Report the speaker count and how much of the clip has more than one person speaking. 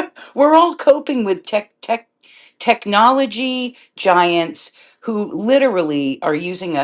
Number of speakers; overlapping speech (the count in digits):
1, no overlap